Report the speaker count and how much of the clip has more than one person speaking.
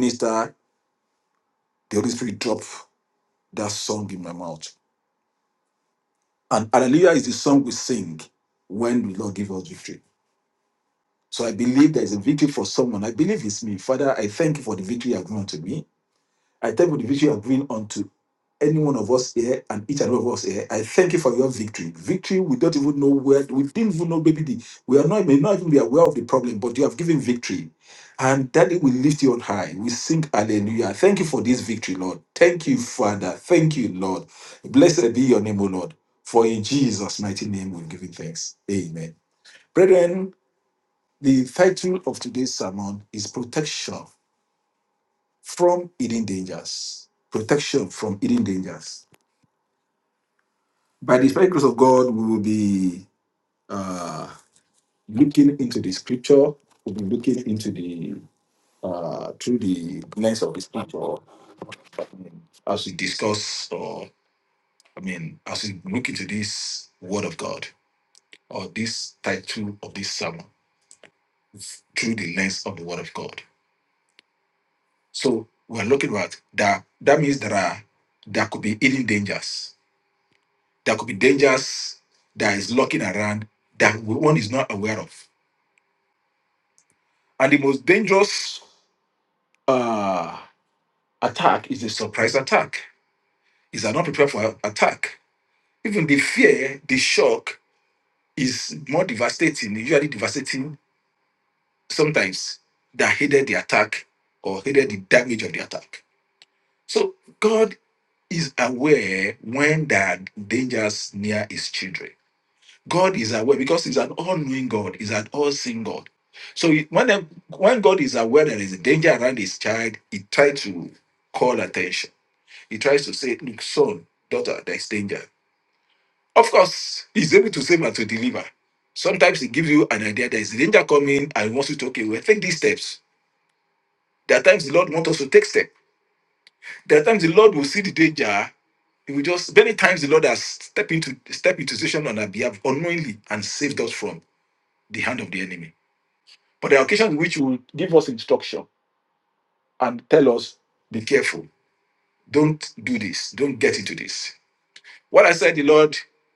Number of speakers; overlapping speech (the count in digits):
1, no overlap